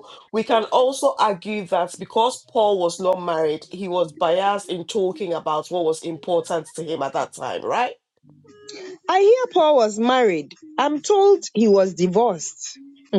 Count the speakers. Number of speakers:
two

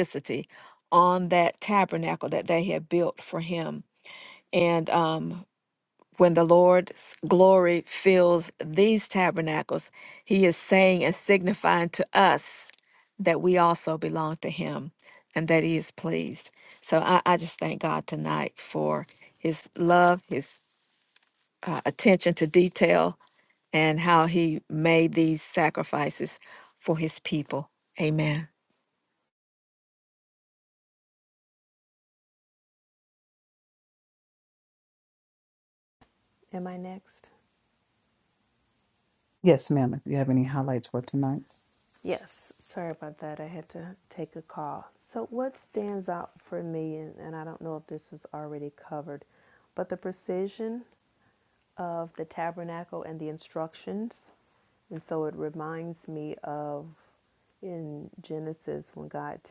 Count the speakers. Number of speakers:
three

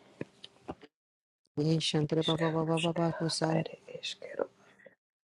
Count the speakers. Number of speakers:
two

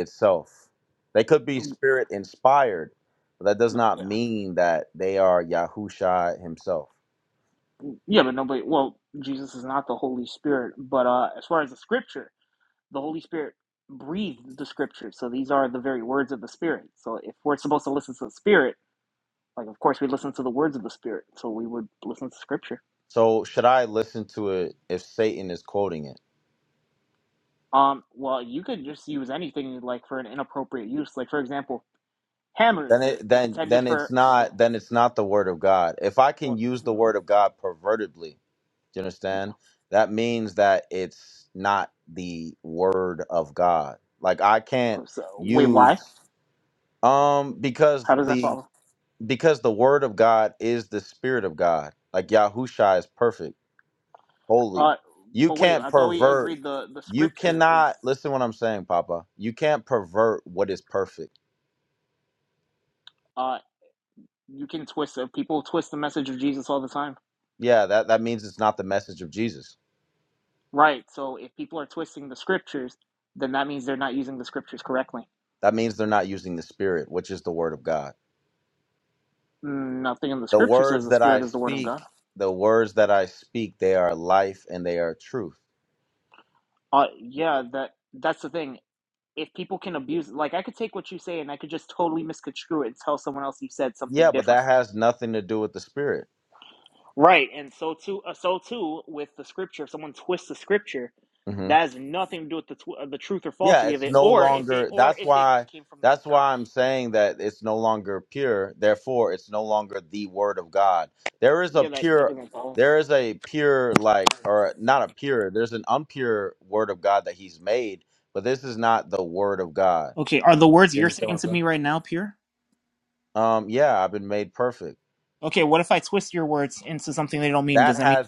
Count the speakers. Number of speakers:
two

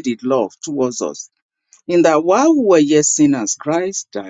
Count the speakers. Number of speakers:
one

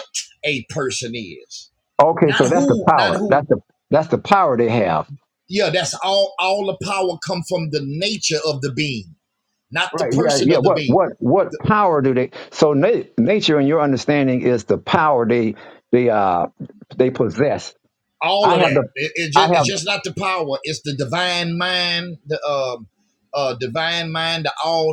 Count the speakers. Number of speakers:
two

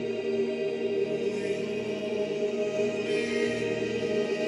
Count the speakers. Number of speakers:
zero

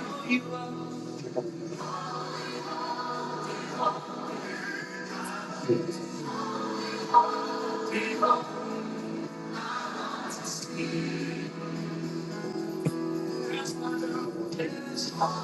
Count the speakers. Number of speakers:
zero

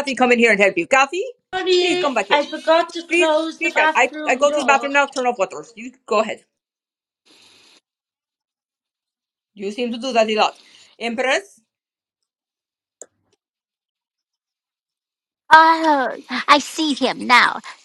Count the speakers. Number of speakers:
three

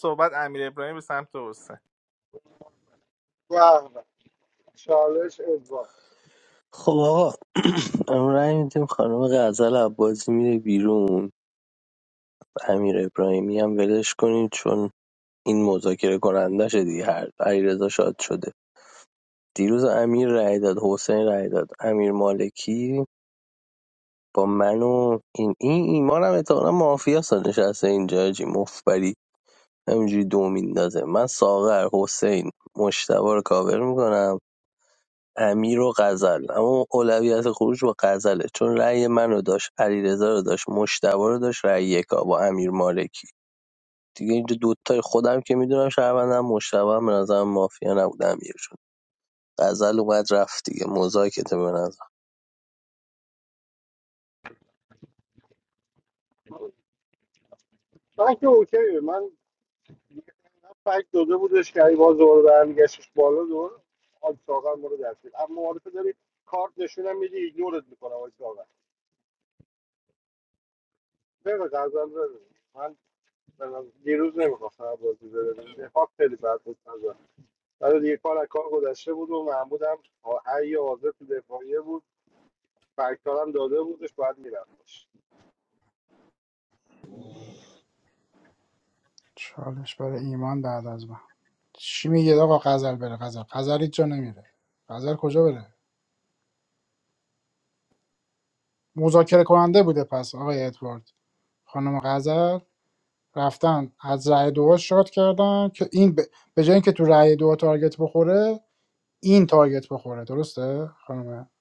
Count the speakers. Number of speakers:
four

